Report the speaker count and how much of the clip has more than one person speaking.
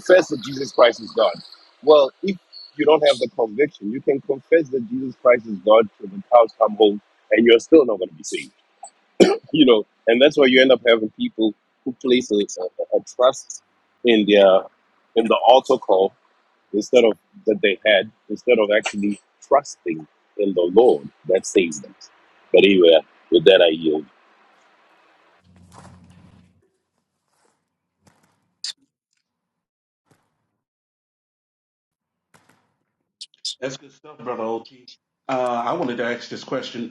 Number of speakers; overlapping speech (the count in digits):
2, no overlap